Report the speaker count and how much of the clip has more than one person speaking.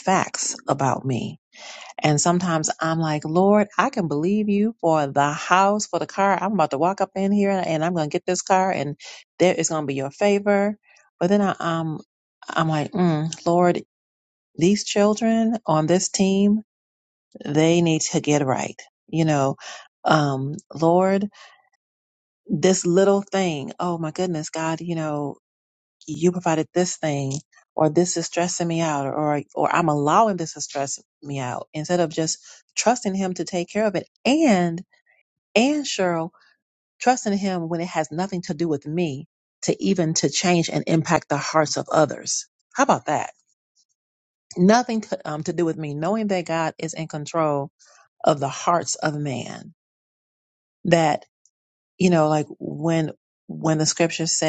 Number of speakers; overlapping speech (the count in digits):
1, no overlap